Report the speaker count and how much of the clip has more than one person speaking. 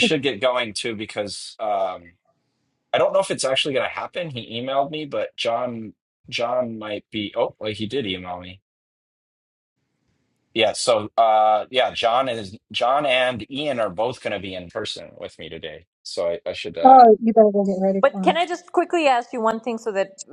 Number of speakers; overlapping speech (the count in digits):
3, about 3%